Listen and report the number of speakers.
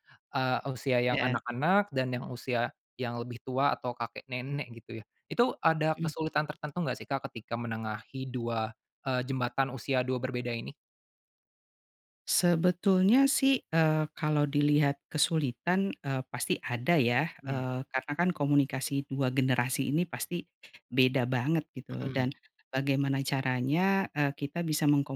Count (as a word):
two